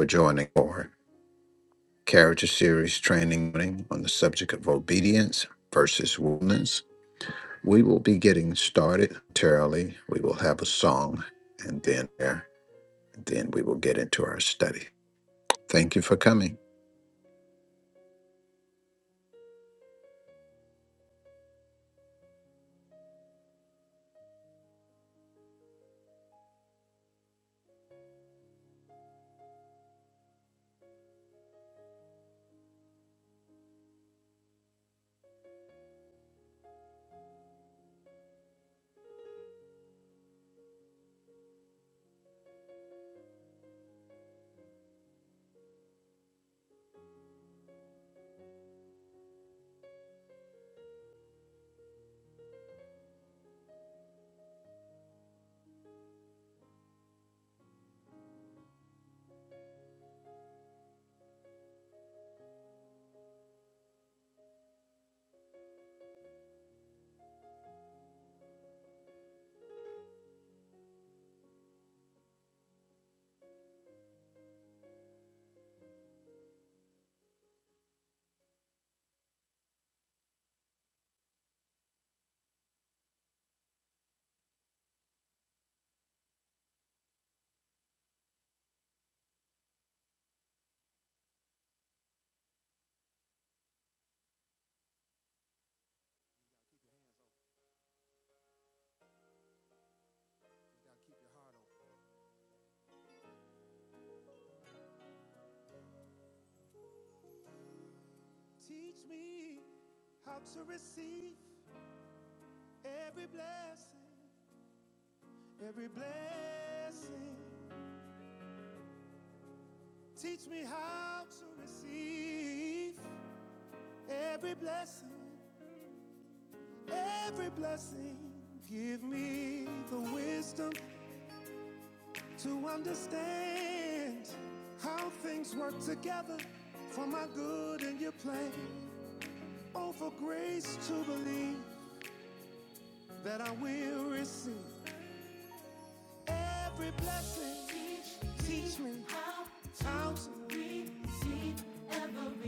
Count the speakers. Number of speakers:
2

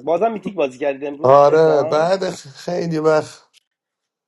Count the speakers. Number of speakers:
2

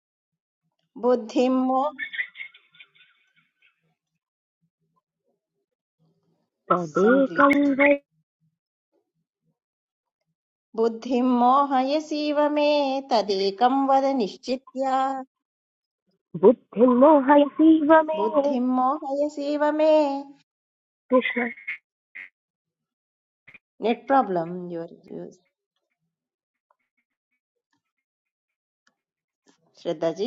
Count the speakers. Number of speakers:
2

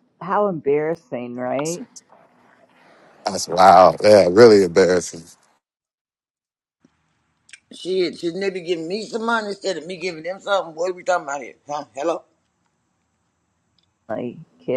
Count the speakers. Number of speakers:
3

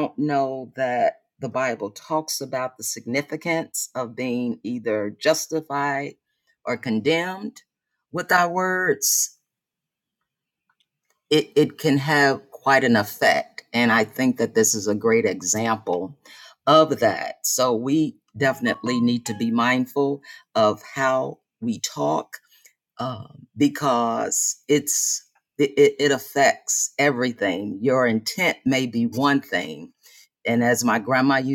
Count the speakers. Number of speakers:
1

